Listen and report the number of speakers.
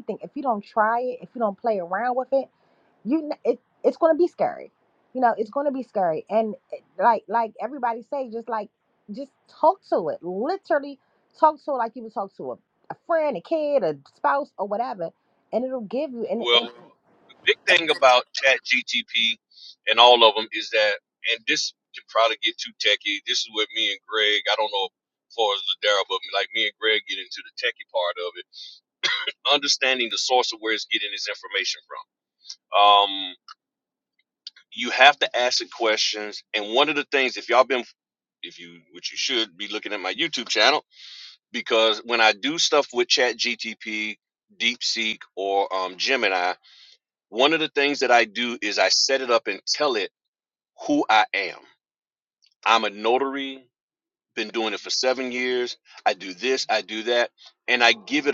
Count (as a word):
two